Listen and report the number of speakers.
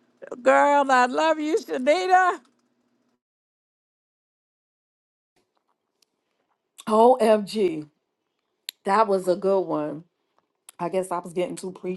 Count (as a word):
two